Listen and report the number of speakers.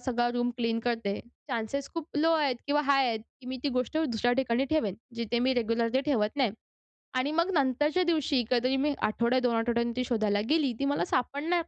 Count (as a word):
one